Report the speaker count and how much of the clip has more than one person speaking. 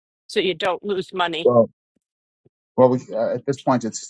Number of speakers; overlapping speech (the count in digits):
2, under 1%